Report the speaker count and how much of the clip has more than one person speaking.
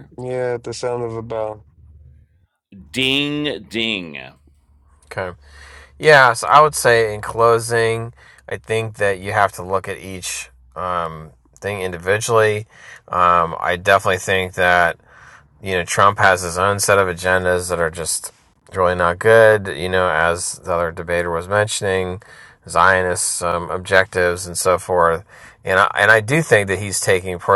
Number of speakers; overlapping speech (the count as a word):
three, no overlap